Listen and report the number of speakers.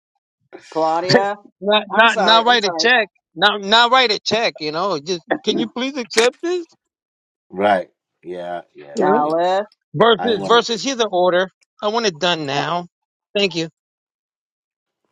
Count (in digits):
3